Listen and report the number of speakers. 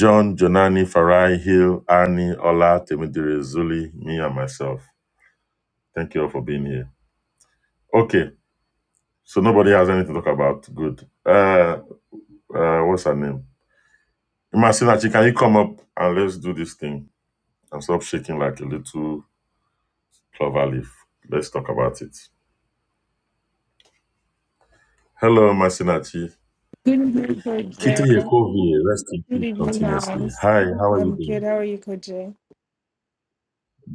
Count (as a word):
two